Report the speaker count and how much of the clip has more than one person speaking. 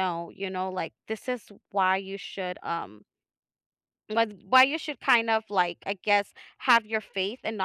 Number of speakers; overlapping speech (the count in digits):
1, no overlap